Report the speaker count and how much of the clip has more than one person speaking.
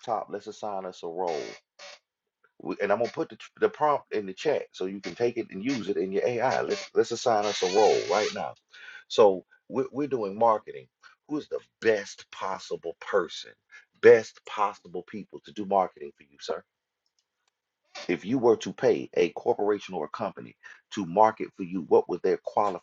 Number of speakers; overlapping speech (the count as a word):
one, no overlap